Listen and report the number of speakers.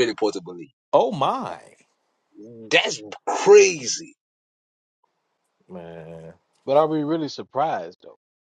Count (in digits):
3